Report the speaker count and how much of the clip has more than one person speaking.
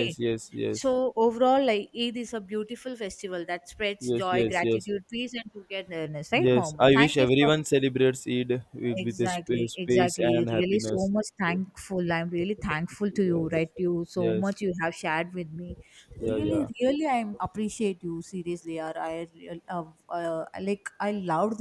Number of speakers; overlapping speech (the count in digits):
2, about 24%